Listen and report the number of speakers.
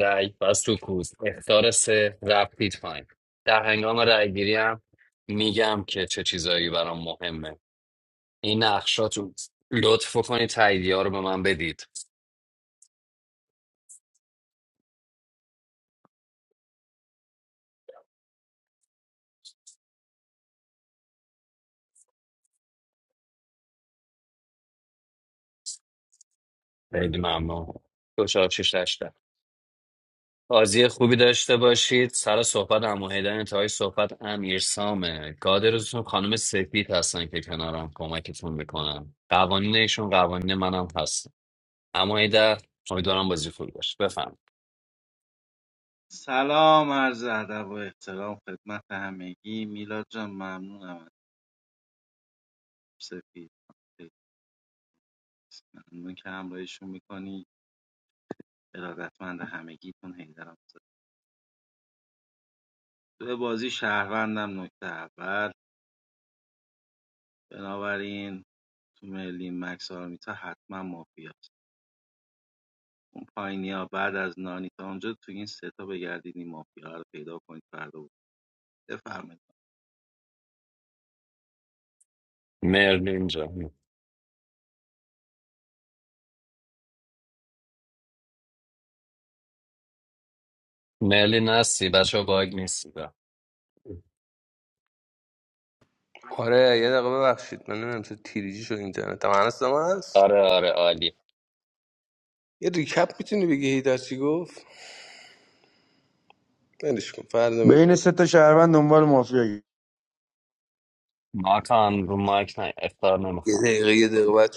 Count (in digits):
4